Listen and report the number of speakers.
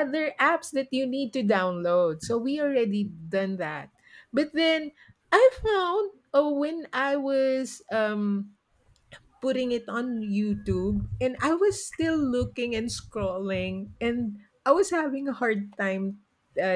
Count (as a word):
one